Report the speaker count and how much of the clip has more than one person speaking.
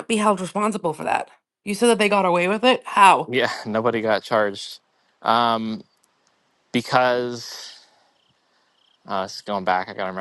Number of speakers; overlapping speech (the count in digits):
2, no overlap